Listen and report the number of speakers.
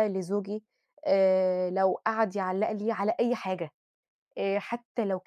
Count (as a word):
one